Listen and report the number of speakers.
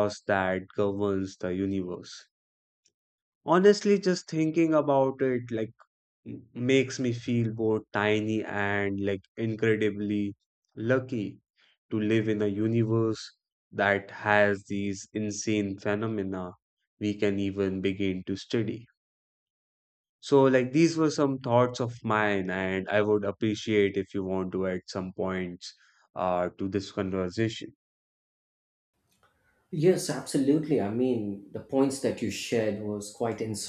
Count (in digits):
2